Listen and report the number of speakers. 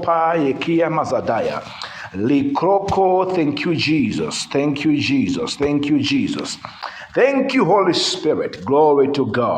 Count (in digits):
1